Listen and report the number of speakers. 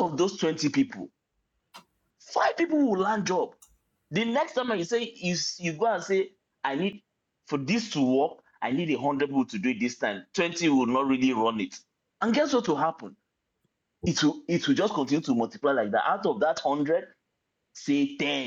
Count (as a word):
one